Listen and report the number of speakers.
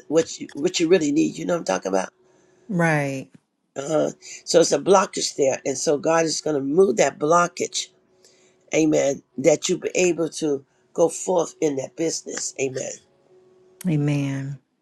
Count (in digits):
2